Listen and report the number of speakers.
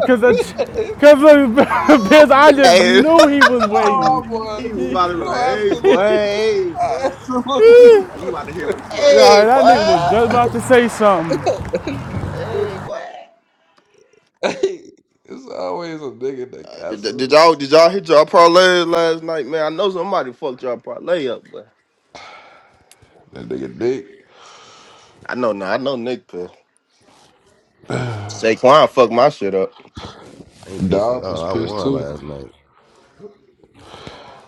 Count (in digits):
4